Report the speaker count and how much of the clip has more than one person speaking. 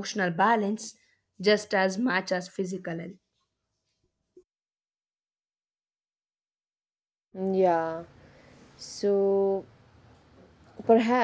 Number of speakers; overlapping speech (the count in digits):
2, no overlap